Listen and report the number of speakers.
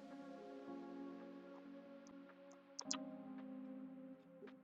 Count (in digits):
0